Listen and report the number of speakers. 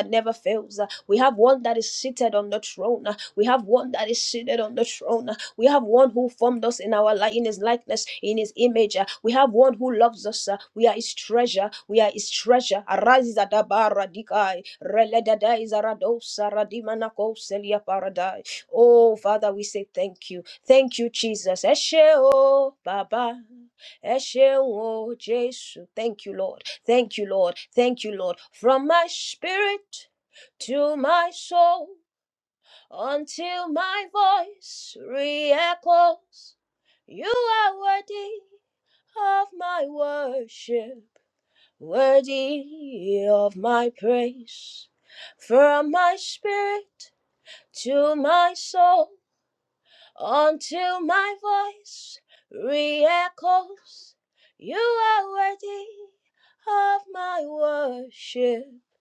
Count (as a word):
one